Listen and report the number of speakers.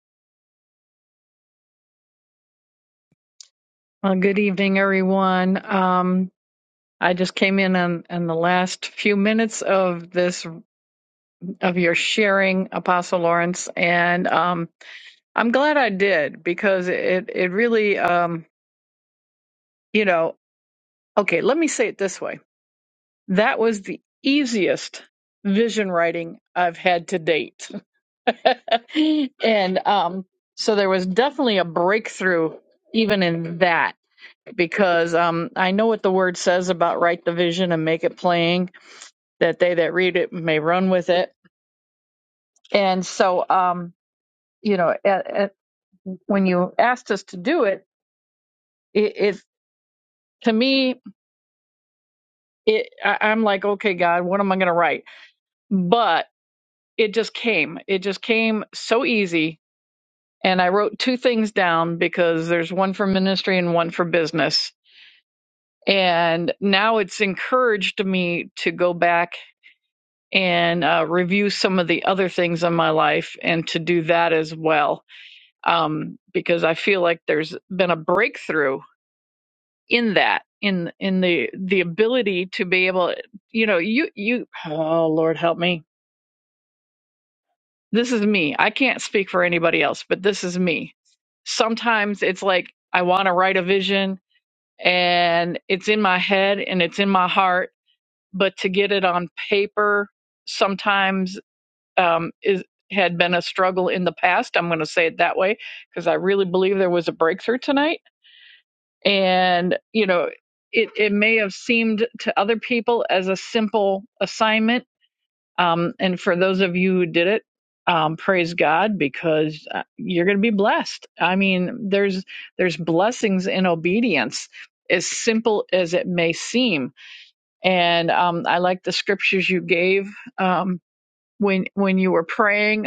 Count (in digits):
1